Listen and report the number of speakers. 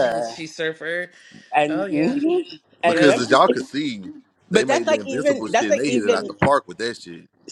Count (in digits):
3